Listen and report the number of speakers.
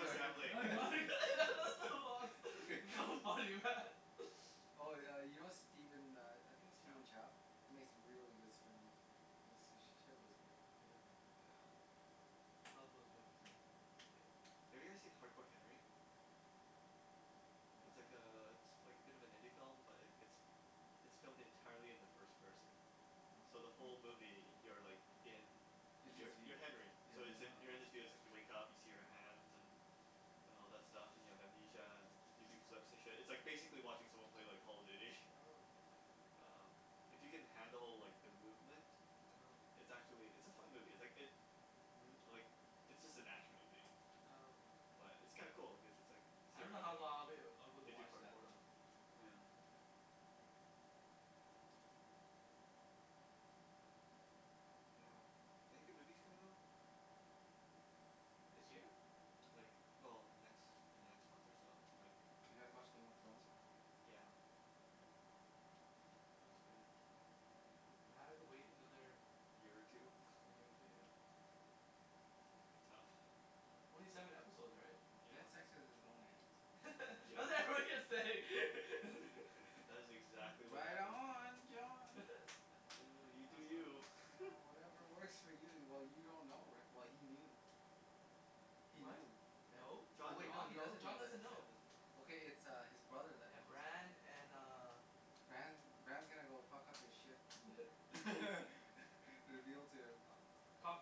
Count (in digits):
3